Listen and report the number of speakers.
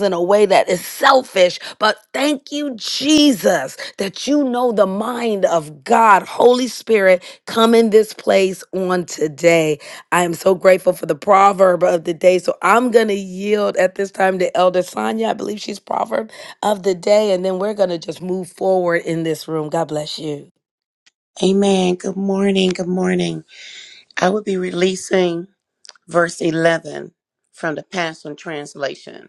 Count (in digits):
2